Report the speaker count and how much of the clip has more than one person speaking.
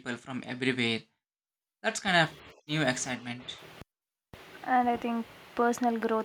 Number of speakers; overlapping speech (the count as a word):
two, no overlap